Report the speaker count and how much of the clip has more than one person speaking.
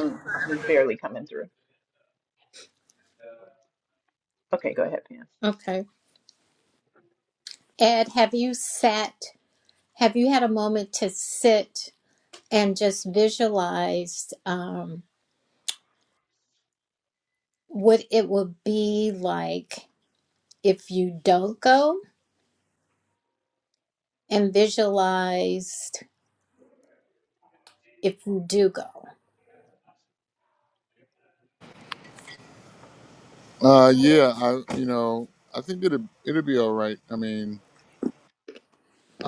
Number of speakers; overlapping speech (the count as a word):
three, no overlap